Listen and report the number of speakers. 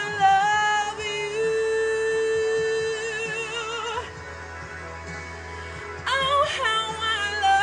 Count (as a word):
one